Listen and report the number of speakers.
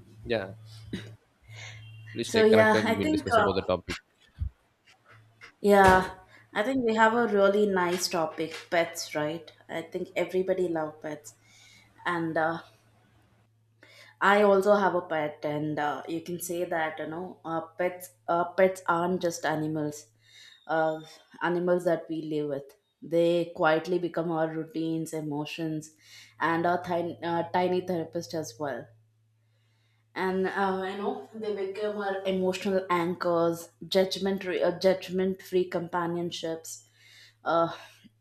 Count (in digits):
2